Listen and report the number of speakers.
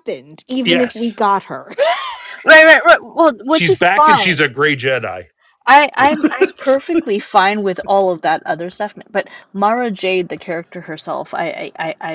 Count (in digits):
3